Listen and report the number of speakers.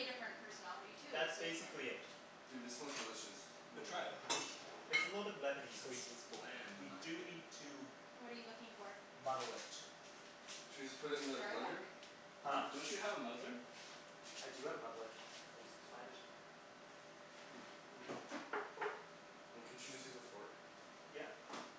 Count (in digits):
4